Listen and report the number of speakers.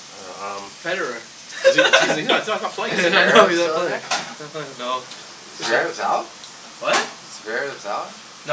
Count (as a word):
three